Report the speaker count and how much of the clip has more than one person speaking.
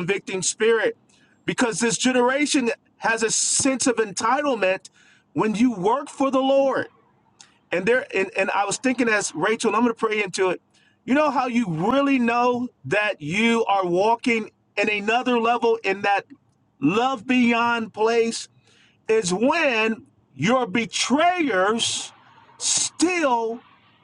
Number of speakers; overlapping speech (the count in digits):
1, no overlap